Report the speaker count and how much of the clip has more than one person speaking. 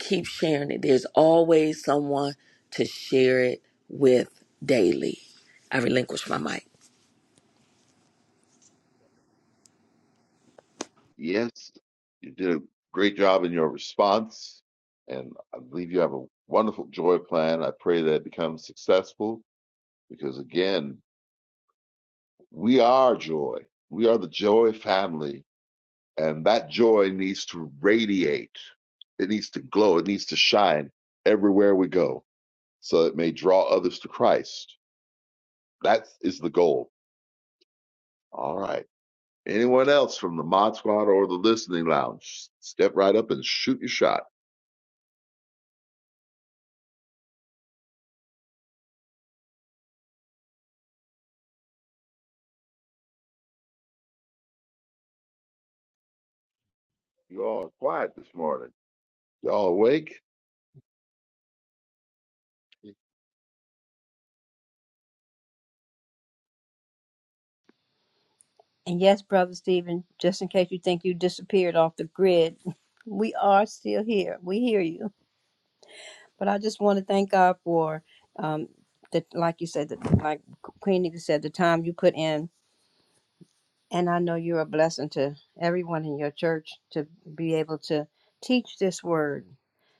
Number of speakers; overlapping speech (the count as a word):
three, no overlap